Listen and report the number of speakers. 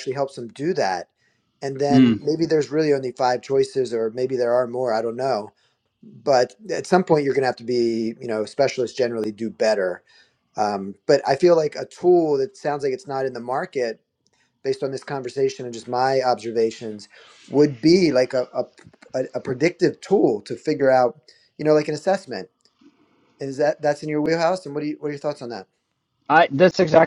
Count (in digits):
2